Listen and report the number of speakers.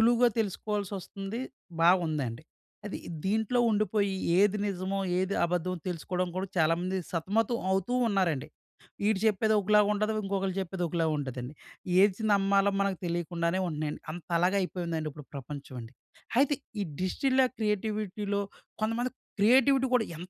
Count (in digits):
1